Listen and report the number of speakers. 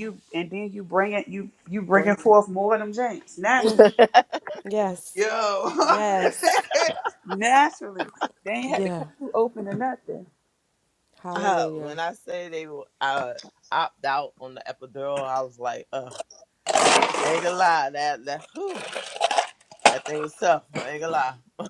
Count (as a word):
three